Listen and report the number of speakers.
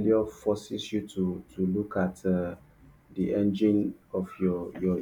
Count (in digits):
1